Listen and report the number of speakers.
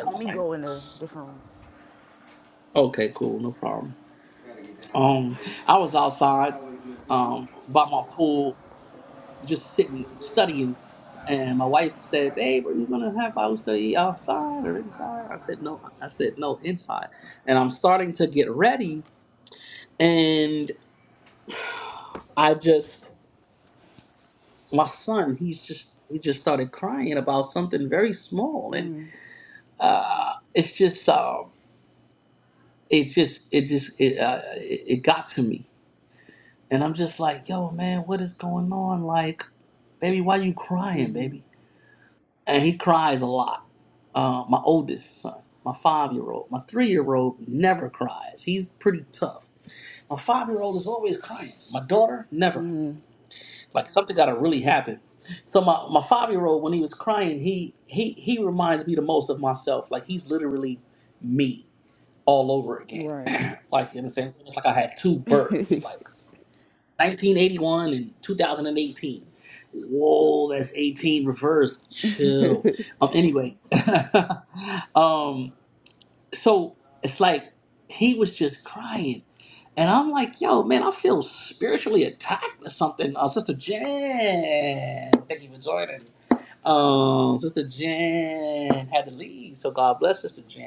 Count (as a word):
two